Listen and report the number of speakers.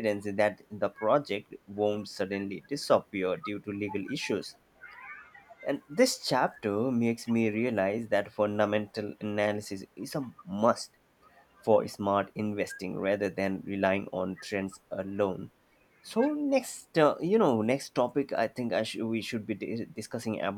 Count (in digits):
1